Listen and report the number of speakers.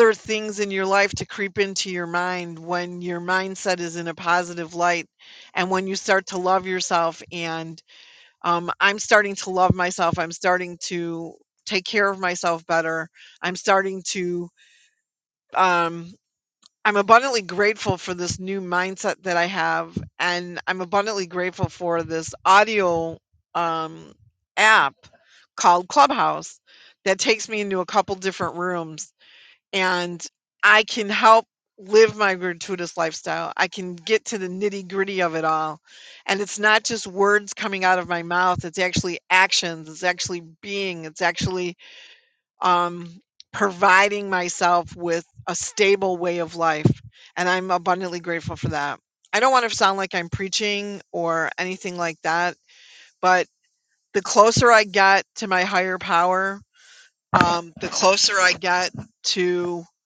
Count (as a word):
one